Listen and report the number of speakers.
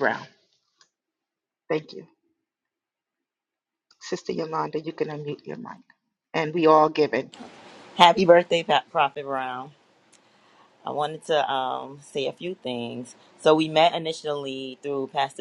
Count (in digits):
2